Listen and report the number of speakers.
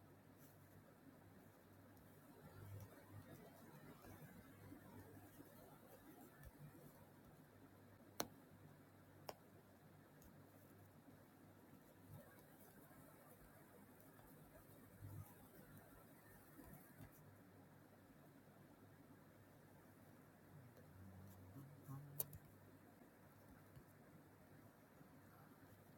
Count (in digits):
0